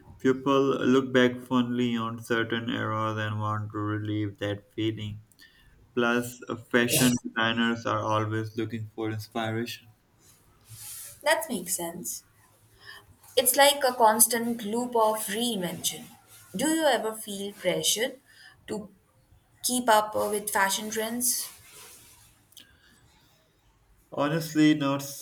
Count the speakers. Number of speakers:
two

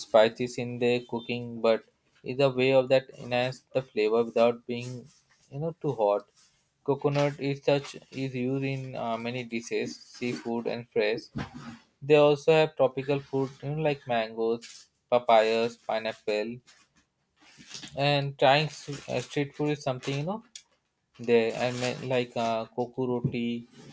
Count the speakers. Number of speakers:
one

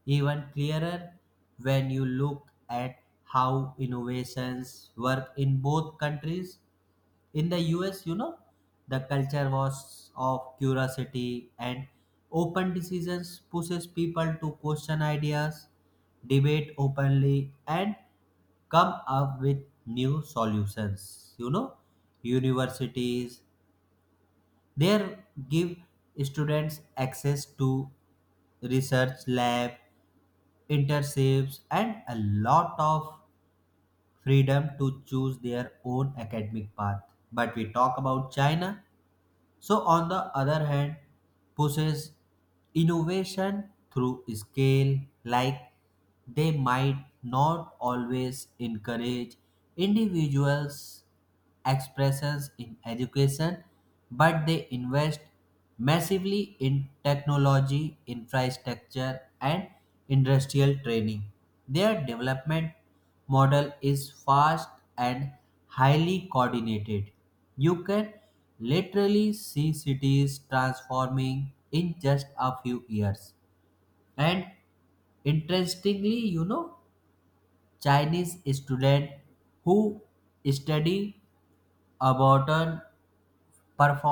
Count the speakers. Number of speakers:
one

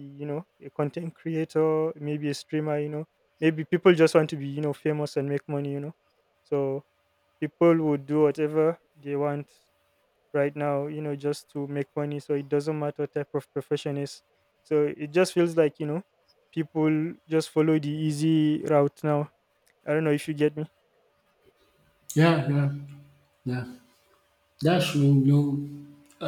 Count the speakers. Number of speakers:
two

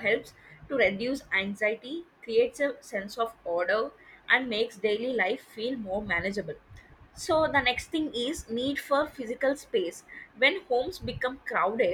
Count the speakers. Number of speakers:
one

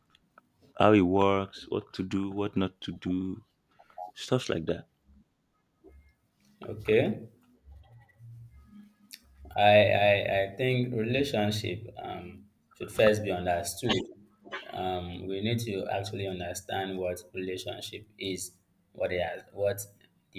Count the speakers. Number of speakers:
two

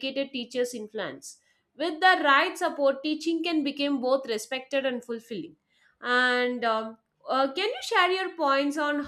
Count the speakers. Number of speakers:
one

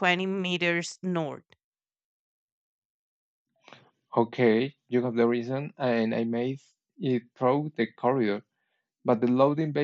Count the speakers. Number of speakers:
two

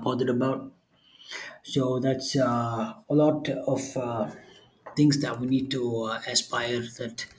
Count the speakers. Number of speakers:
one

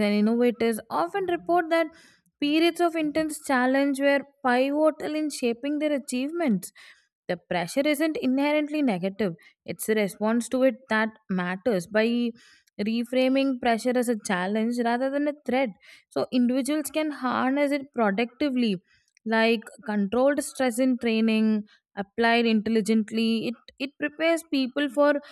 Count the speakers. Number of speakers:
one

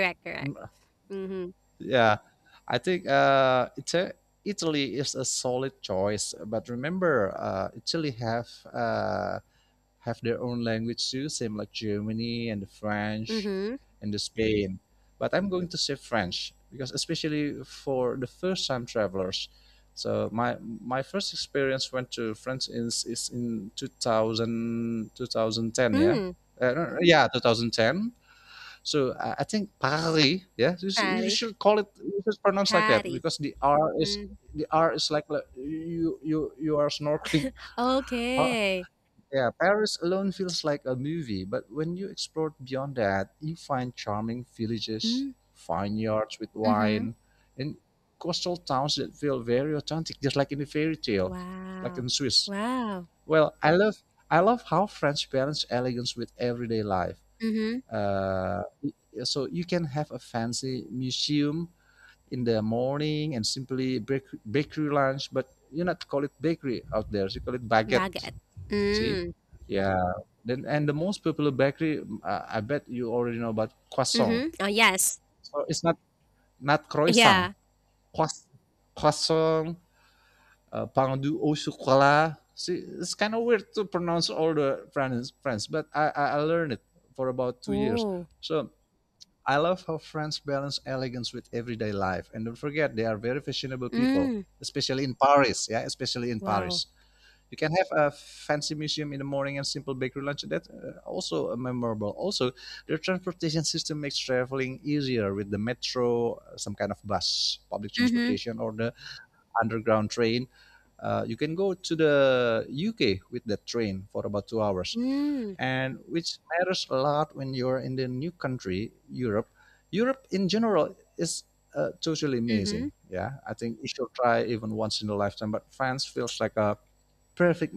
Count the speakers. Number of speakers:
two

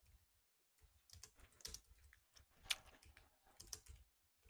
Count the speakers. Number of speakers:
zero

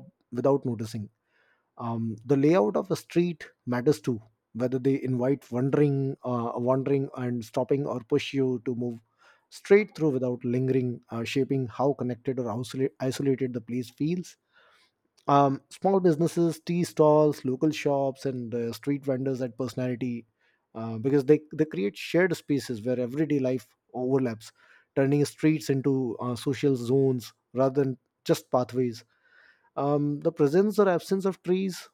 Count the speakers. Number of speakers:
one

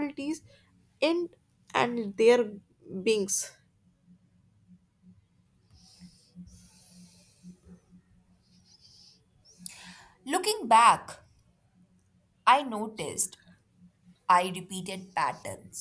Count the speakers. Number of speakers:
two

